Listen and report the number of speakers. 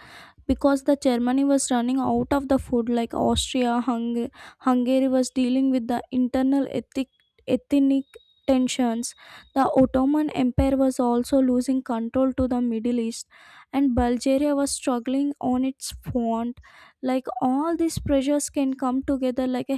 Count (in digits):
1